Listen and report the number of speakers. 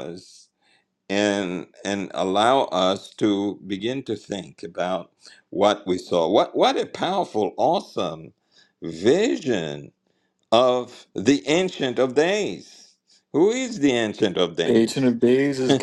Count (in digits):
2